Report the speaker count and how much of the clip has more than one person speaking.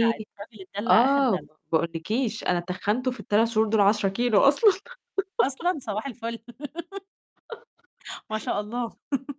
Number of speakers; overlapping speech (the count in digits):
2, about 9%